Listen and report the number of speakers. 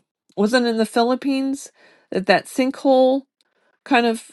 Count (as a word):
one